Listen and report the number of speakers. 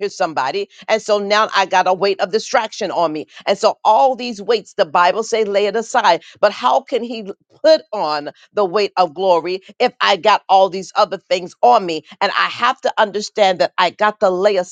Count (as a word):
one